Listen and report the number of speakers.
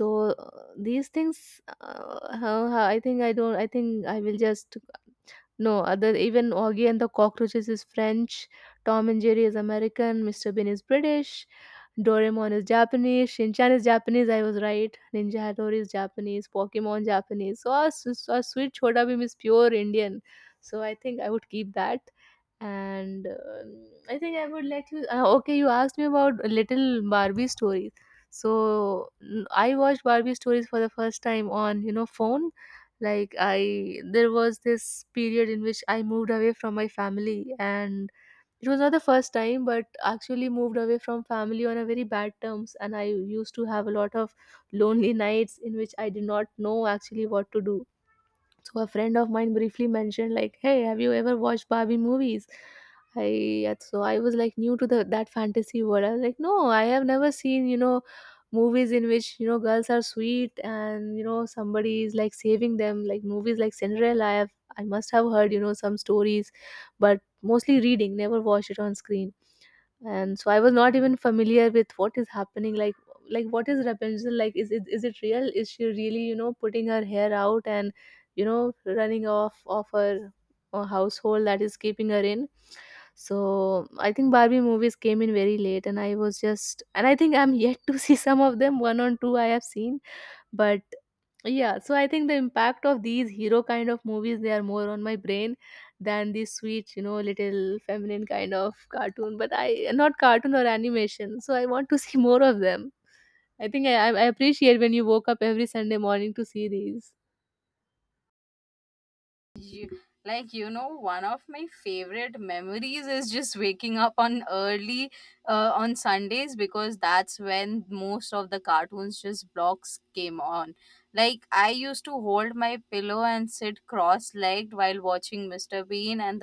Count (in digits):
2